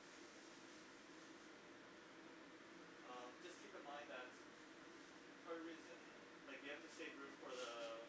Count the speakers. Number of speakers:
one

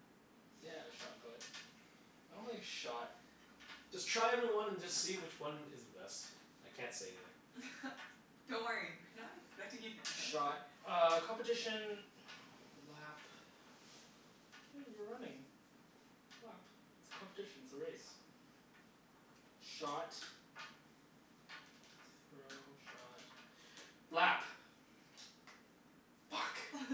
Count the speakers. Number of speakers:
three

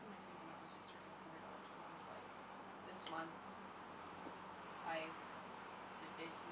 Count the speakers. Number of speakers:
one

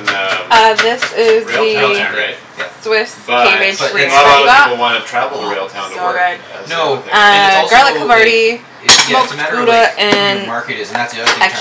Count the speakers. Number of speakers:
three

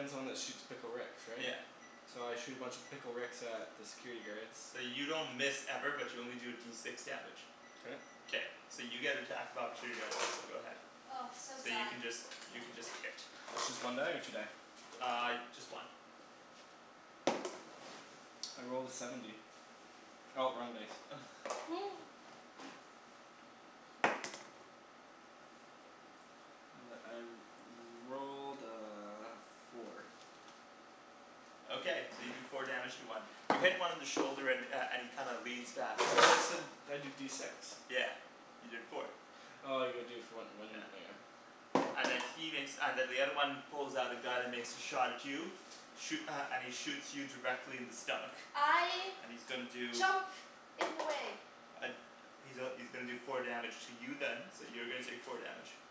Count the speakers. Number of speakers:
three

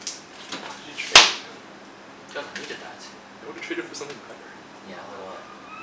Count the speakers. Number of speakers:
two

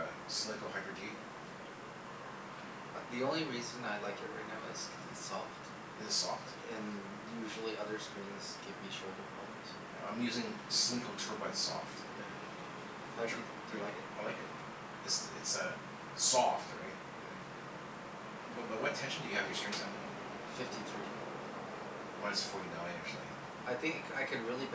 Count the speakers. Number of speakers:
two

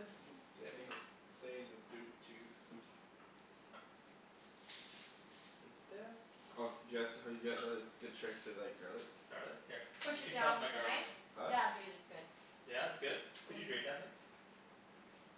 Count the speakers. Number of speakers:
four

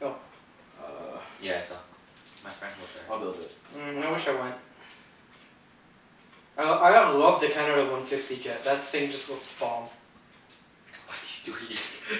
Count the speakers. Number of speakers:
three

